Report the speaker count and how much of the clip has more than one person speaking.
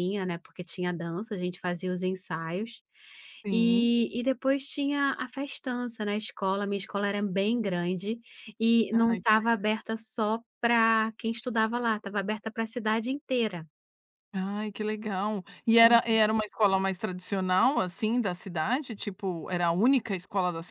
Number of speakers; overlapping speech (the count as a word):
two, about 5%